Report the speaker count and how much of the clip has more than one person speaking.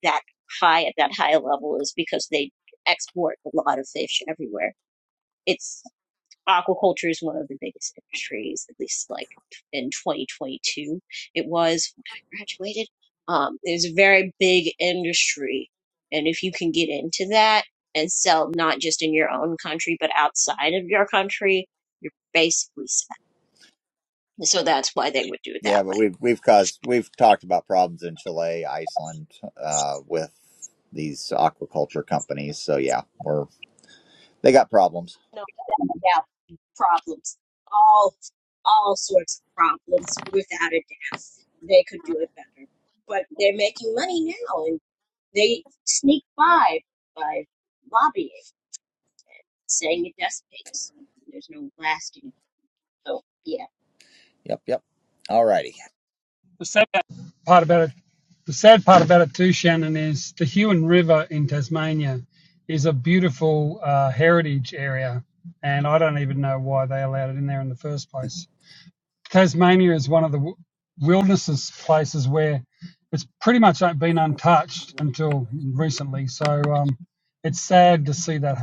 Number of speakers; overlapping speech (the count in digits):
3, about 1%